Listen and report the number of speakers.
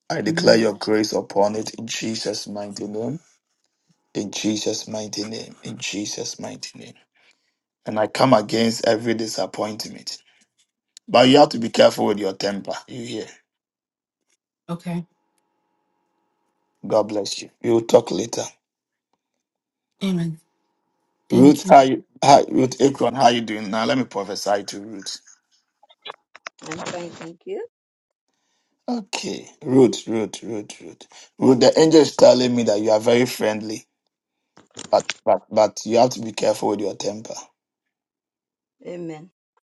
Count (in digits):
3